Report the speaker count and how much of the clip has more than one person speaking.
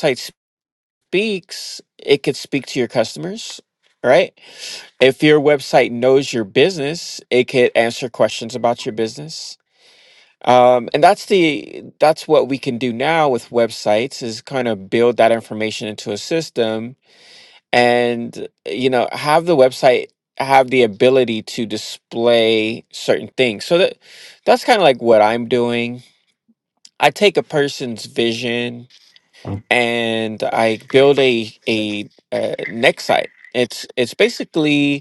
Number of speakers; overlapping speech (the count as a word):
one, no overlap